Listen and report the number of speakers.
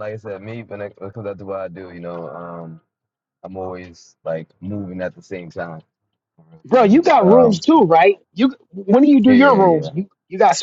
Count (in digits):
2